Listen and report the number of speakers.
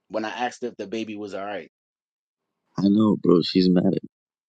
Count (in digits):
2